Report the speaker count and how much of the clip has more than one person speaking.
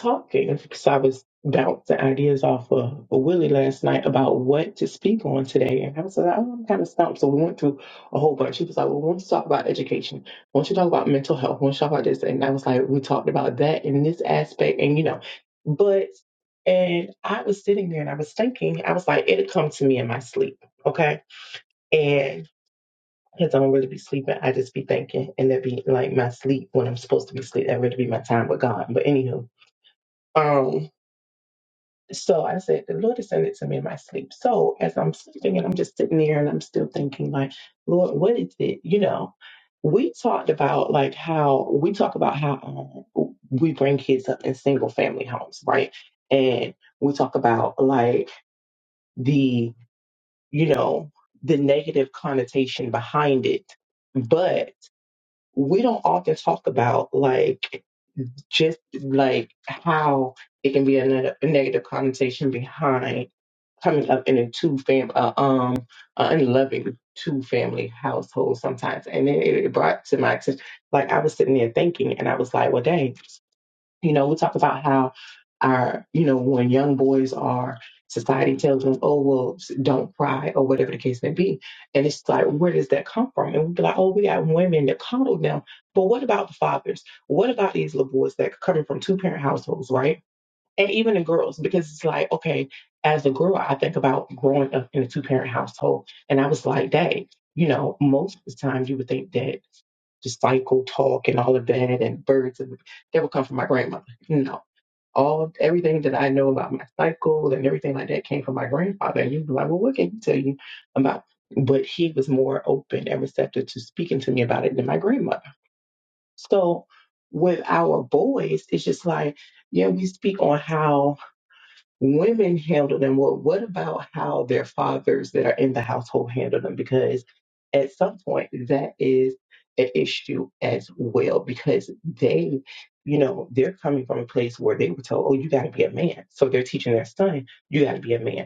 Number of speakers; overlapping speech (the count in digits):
1, no overlap